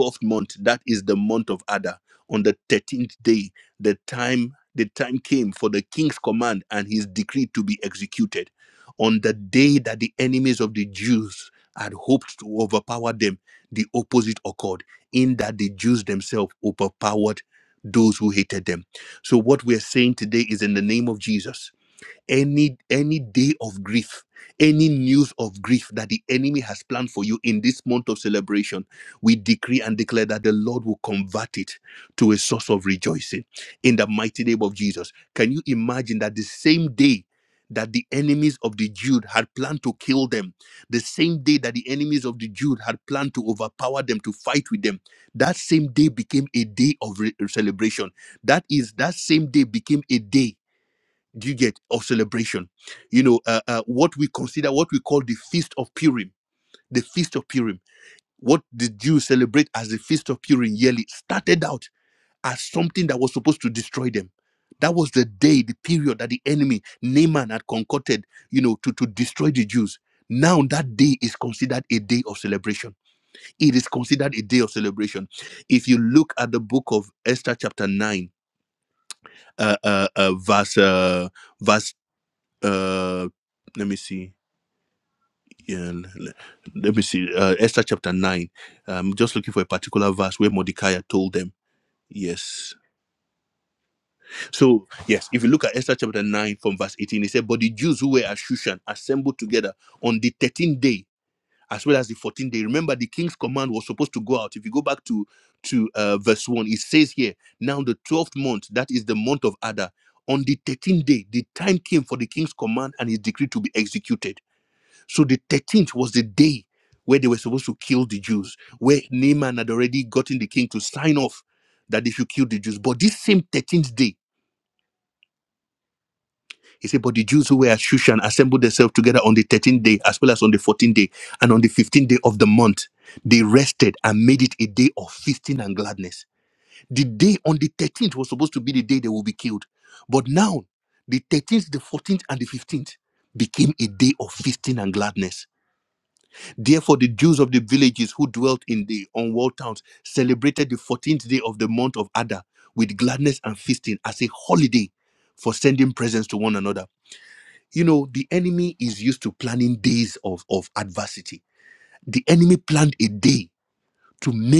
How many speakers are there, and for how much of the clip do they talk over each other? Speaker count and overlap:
one, no overlap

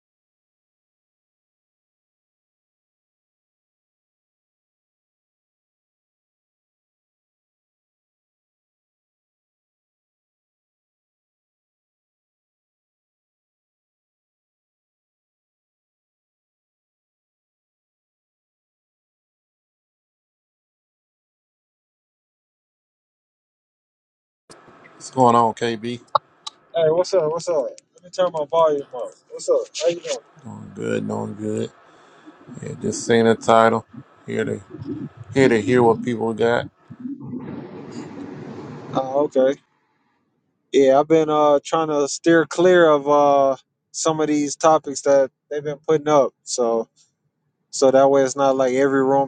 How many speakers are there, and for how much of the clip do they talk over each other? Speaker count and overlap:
two, no overlap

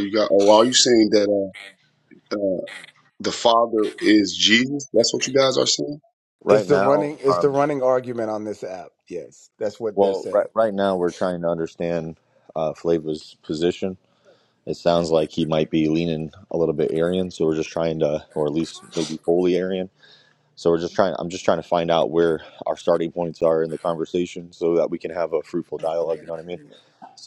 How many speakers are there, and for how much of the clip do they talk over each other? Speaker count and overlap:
three, about 5%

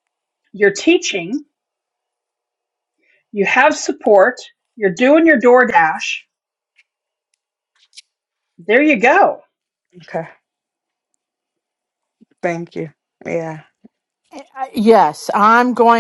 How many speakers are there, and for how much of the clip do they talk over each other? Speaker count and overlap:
three, no overlap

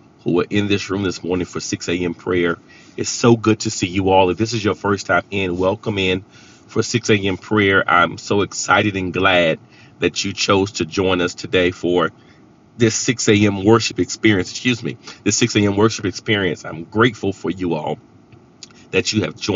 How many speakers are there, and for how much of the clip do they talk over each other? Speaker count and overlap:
one, no overlap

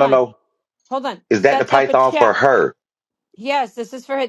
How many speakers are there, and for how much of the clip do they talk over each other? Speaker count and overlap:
two, about 28%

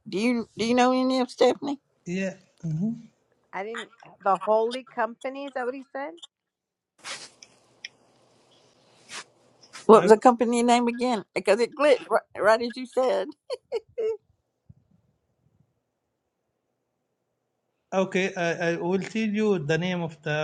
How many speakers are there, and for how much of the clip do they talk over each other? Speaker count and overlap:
three, about 1%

